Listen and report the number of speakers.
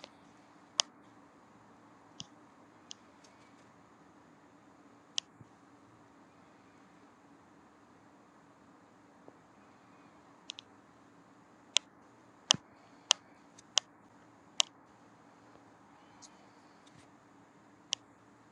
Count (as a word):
zero